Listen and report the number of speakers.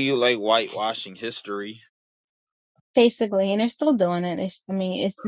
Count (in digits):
2